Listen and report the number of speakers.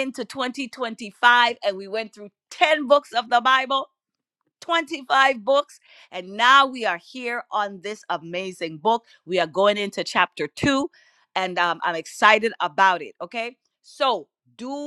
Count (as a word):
one